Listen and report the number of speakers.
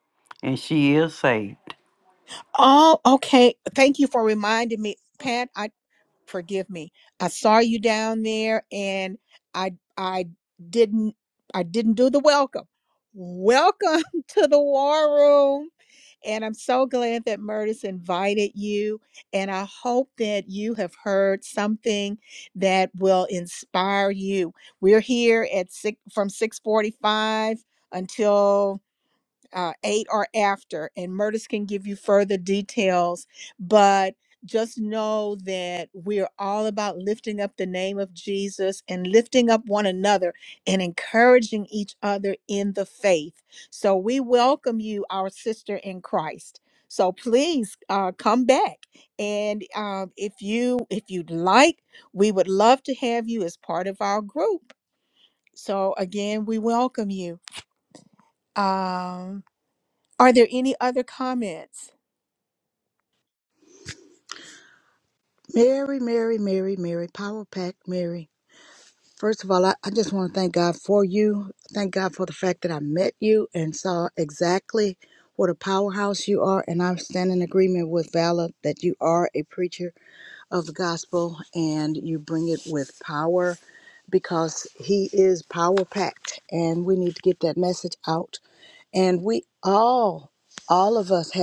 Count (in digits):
3